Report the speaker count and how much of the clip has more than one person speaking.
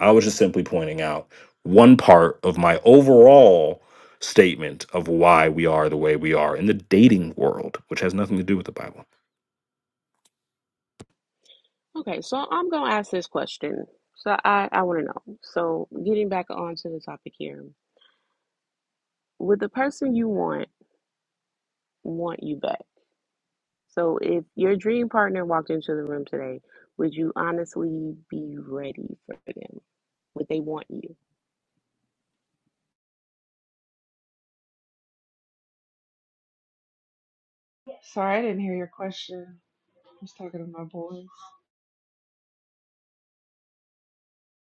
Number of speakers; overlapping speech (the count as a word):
three, no overlap